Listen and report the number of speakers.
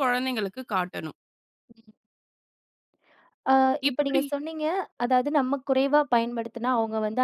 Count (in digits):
2